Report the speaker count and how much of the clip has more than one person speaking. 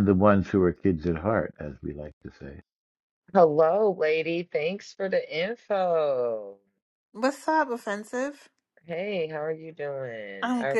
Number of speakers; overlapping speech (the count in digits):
3, about 4%